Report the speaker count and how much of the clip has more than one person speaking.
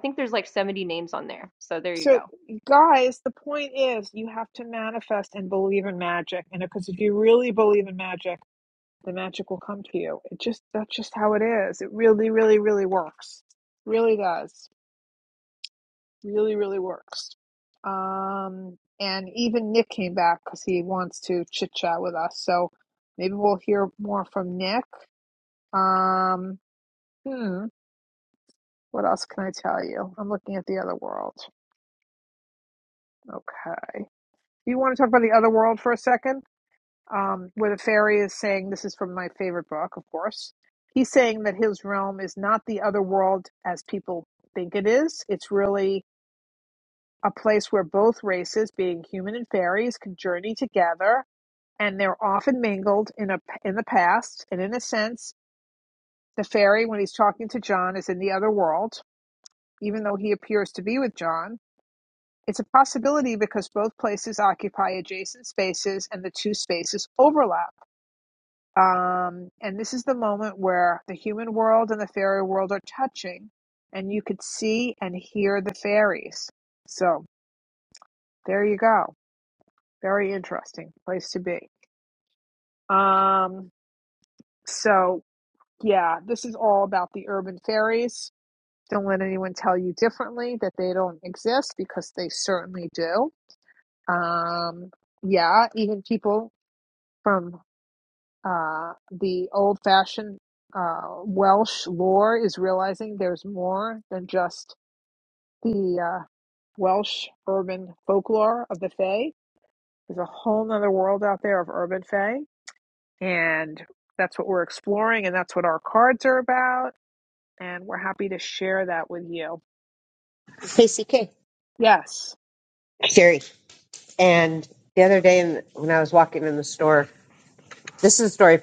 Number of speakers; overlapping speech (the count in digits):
3, under 1%